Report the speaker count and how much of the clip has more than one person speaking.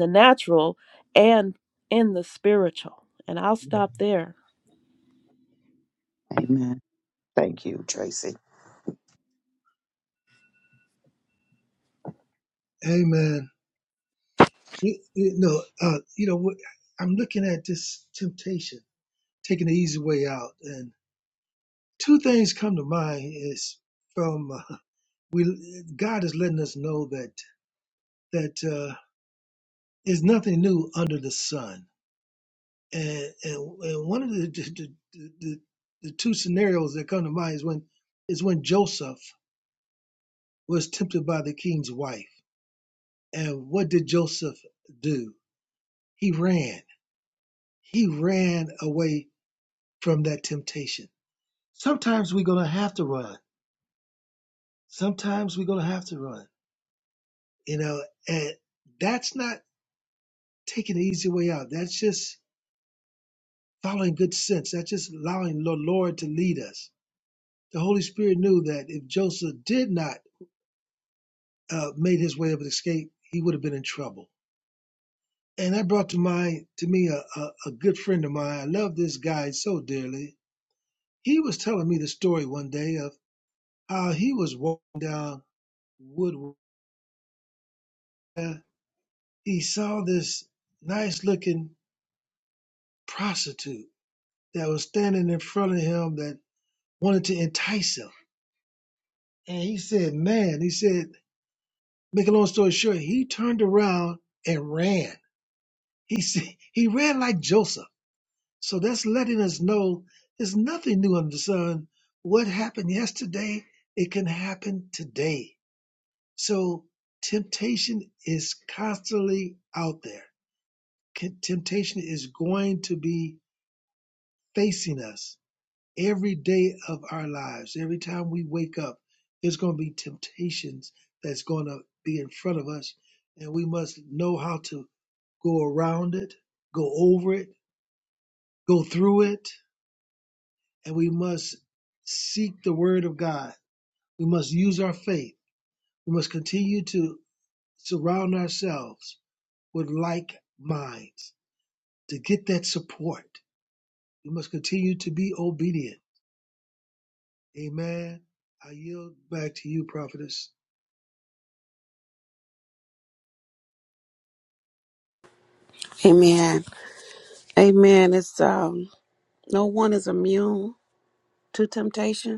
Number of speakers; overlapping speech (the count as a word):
four, no overlap